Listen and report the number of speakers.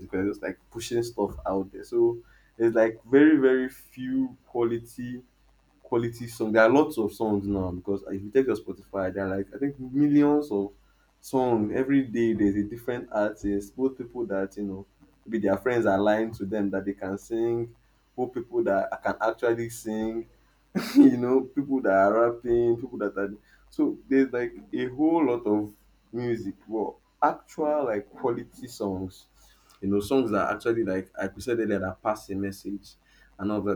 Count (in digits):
1